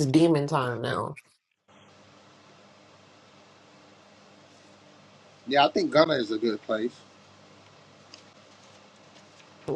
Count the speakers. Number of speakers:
2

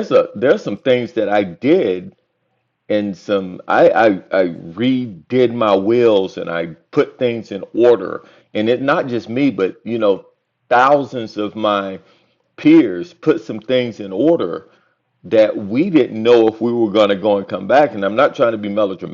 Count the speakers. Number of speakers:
1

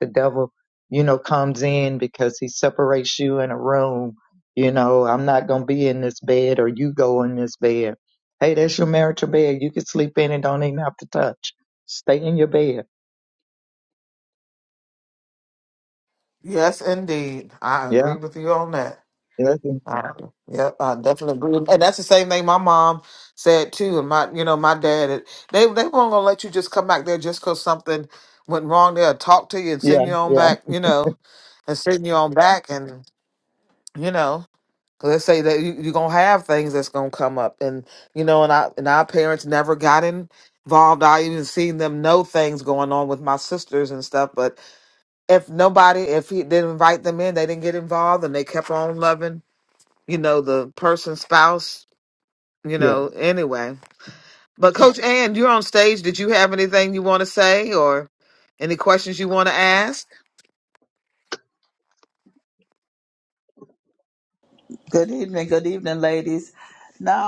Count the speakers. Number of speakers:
3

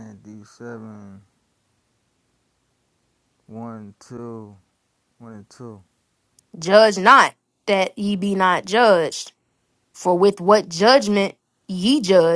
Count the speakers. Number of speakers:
2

